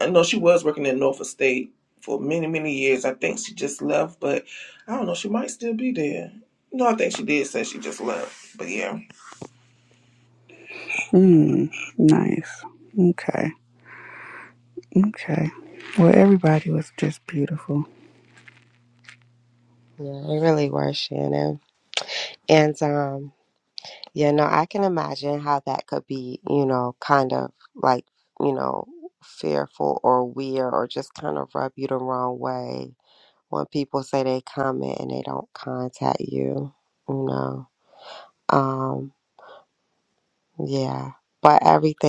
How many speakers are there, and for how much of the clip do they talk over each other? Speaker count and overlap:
three, no overlap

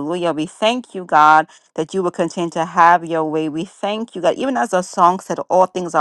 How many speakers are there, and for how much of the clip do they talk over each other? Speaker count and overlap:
one, no overlap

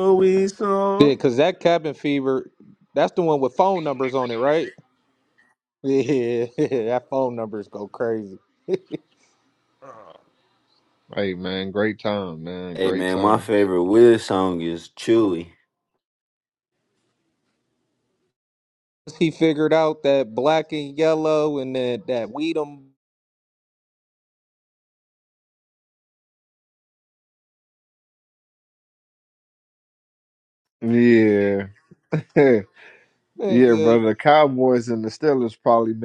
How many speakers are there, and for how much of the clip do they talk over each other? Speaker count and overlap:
four, about 3%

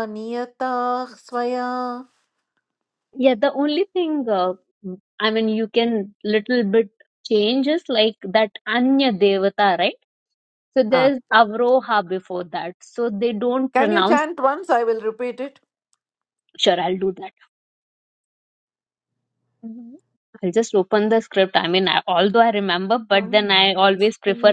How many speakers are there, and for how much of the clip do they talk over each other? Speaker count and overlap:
two, about 3%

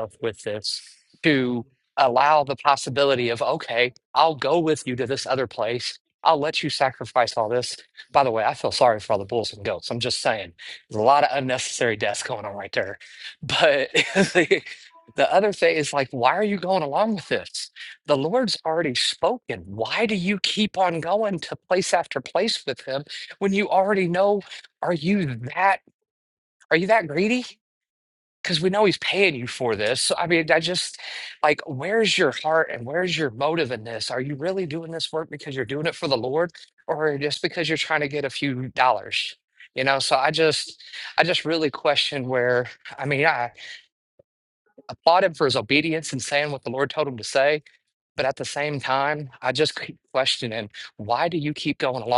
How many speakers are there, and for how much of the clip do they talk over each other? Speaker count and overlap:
one, no overlap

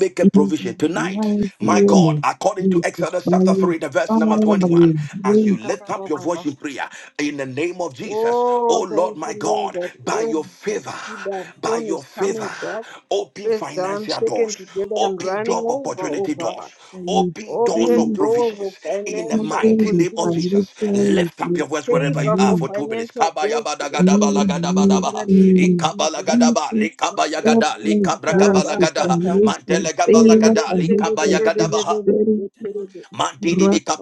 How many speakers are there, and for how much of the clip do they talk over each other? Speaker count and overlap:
three, about 71%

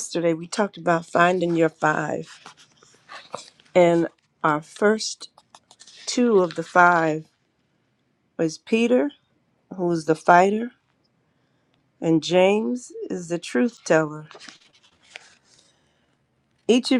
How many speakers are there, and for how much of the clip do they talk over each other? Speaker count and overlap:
one, no overlap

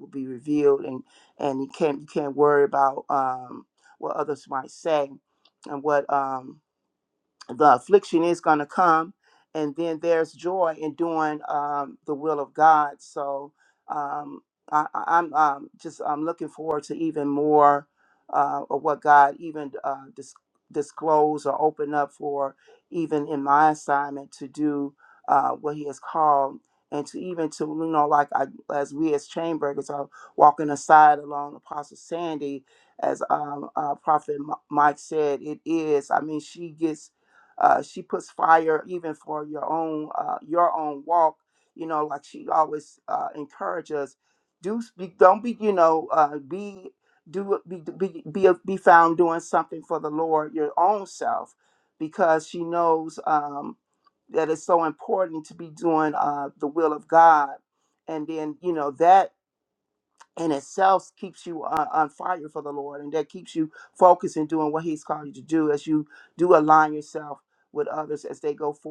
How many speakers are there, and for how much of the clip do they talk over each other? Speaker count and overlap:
one, no overlap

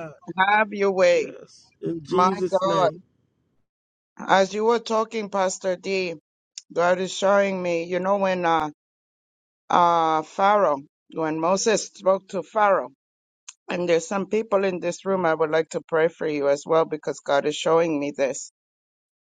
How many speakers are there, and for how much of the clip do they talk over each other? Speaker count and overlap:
two, about 5%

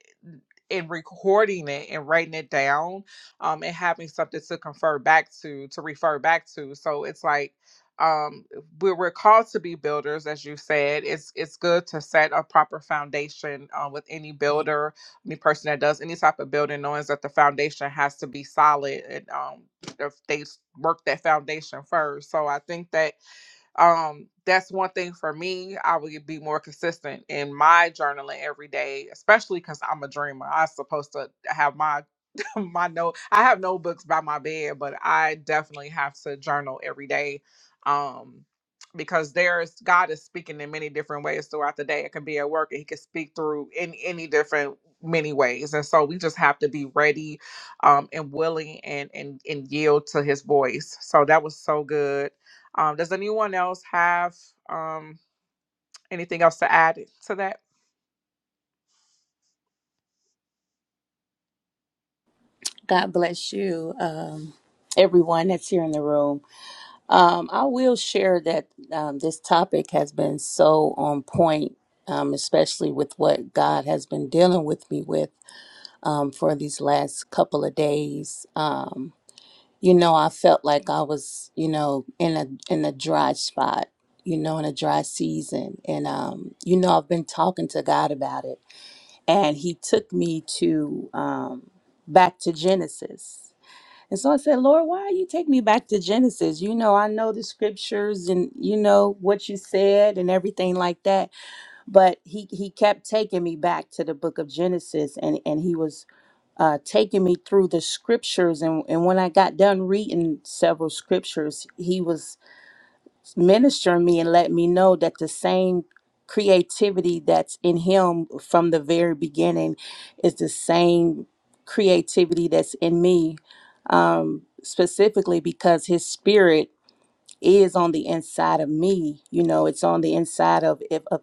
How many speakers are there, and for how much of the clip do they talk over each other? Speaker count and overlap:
two, no overlap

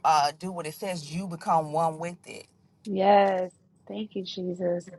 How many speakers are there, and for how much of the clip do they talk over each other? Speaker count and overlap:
two, no overlap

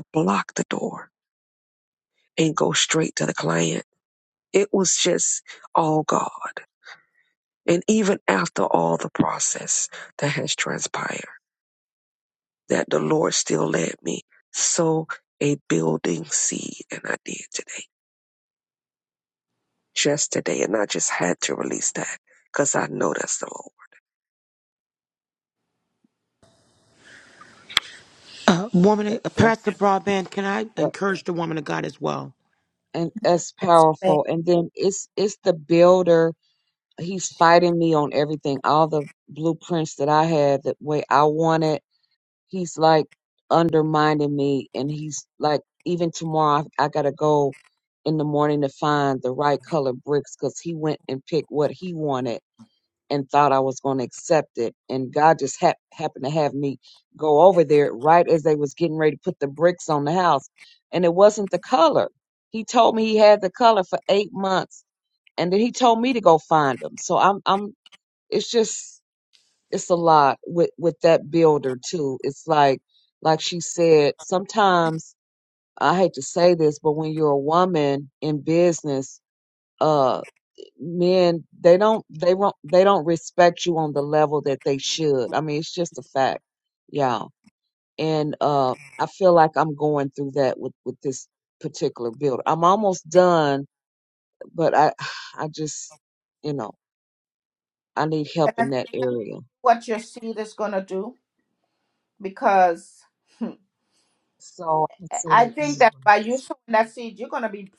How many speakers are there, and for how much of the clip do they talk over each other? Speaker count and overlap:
four, about 1%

